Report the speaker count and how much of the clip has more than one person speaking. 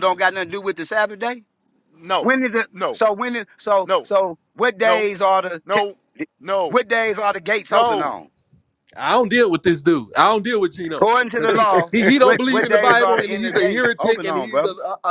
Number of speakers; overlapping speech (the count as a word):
three, about 35%